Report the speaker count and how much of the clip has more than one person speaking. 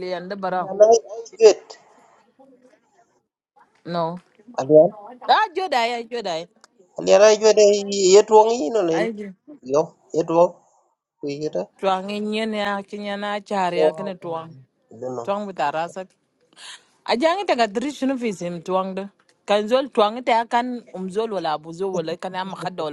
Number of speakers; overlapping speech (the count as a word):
two, about 2%